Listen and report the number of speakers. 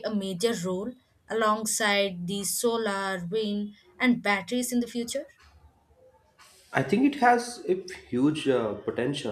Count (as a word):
two